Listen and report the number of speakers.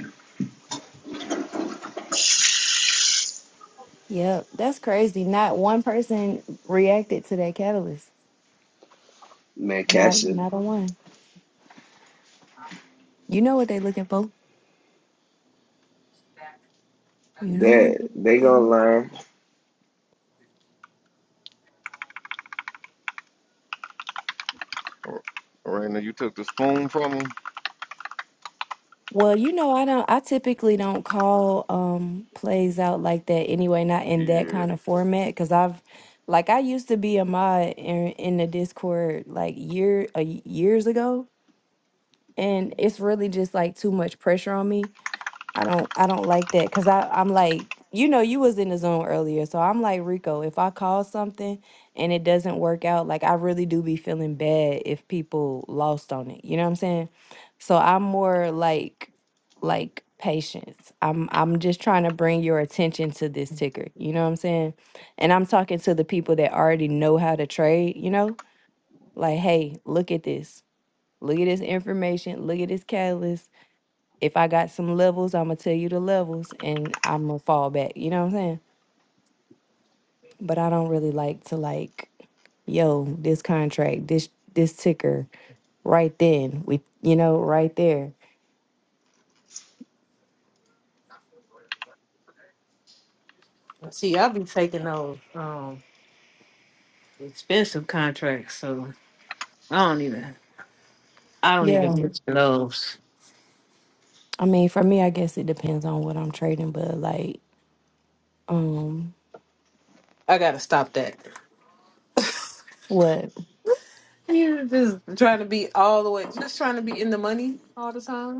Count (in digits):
4